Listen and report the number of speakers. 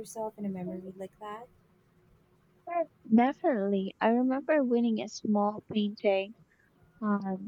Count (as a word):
two